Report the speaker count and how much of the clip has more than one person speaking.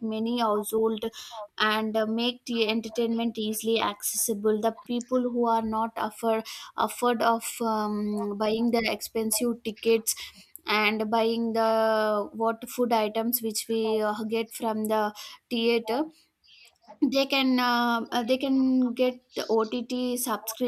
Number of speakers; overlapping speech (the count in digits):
1, no overlap